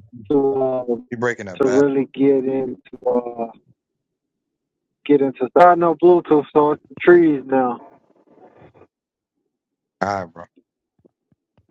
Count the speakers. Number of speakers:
2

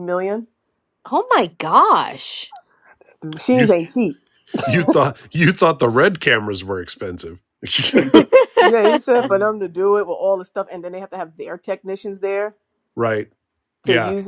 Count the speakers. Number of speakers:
3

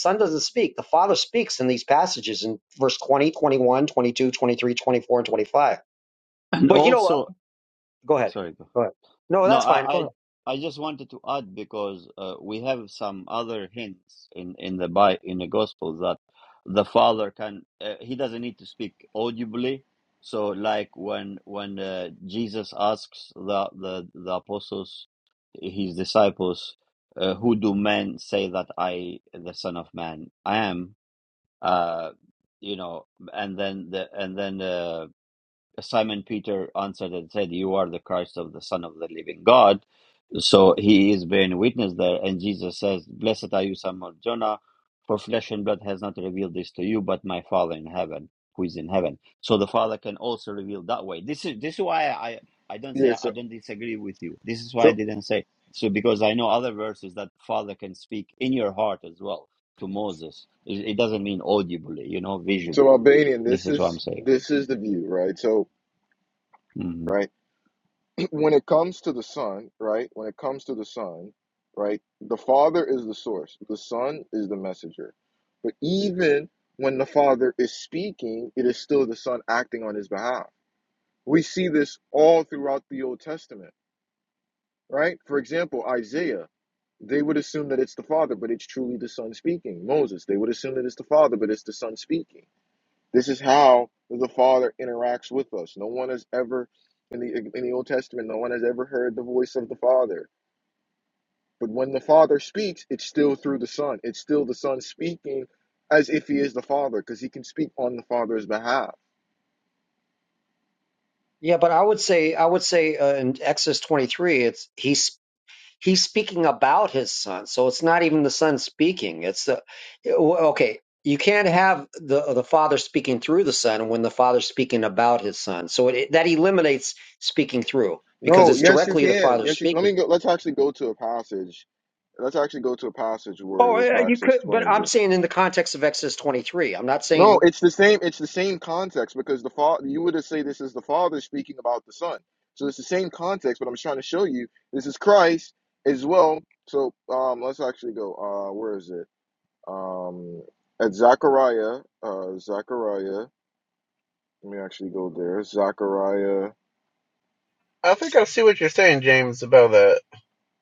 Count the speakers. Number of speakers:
4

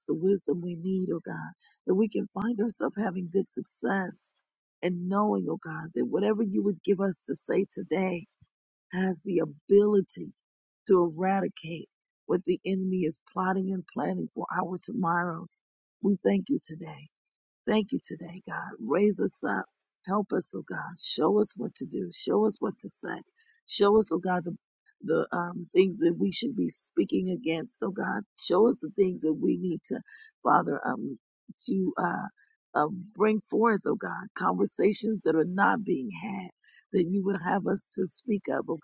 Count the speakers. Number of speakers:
1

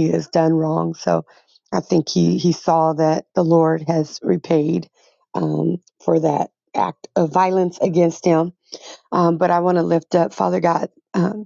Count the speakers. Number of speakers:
1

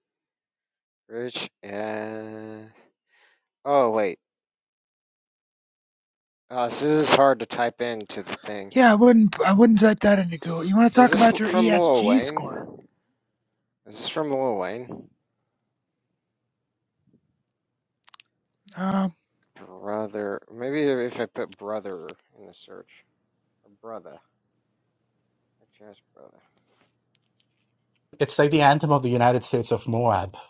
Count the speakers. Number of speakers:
3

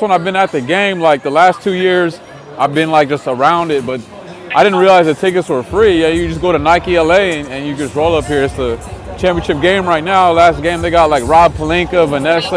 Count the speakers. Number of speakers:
1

